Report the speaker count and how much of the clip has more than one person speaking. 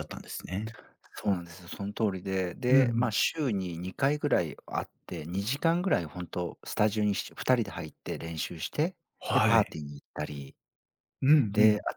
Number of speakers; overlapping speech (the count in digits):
2, about 9%